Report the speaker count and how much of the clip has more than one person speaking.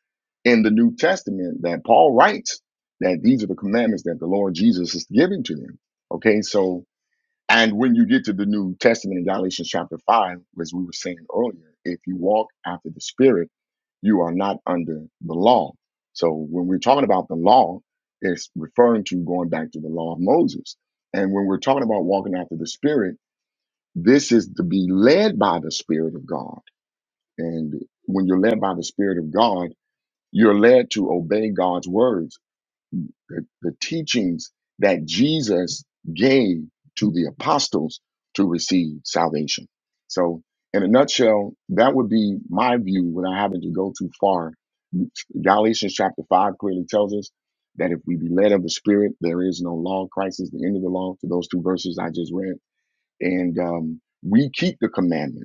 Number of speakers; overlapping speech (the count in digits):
1, no overlap